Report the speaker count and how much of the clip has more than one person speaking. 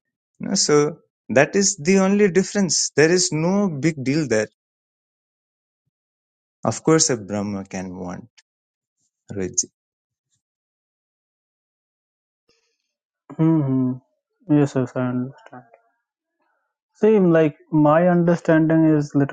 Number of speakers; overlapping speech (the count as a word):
two, no overlap